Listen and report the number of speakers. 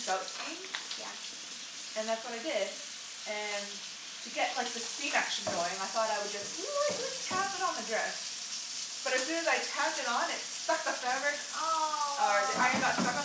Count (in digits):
2